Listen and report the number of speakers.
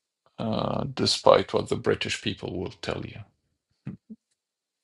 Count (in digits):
1